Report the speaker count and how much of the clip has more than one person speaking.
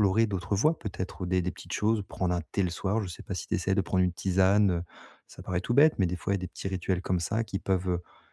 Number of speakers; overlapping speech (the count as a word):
one, no overlap